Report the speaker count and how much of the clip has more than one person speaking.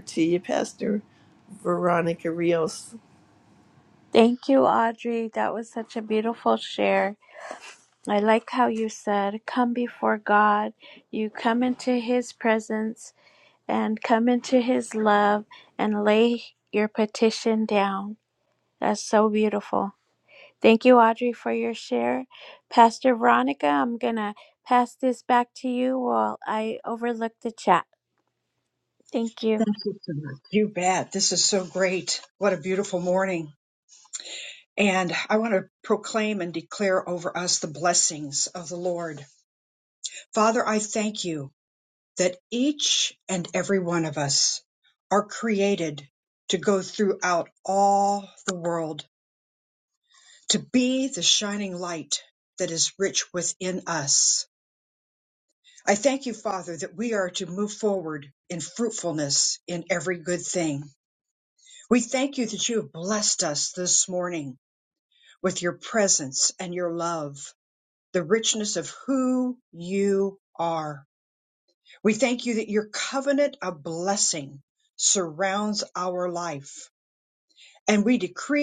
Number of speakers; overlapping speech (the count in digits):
3, under 1%